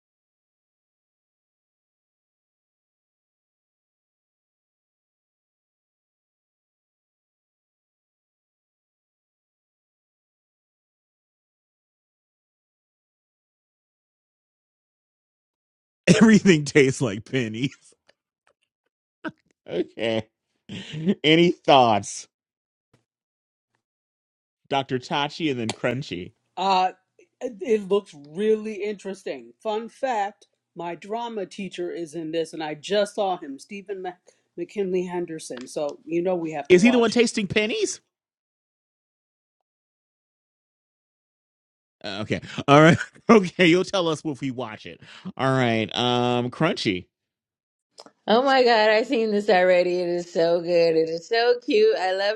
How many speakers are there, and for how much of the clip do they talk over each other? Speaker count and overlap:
3, about 1%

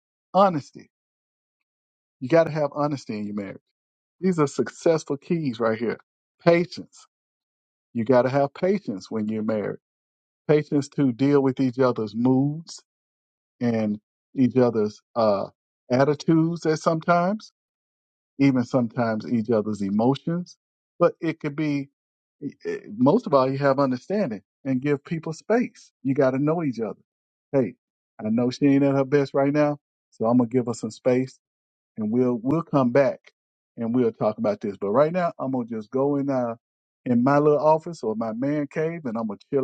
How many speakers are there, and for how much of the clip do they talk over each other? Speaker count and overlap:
1, no overlap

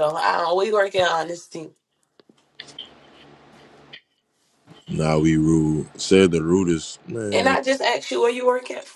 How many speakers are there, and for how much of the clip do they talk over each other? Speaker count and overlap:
2, about 3%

